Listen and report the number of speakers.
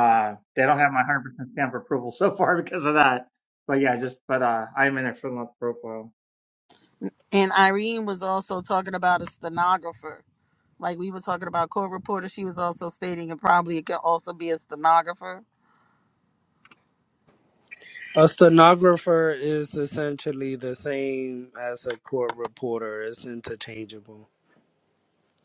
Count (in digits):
3